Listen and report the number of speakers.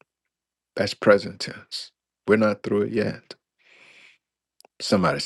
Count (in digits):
1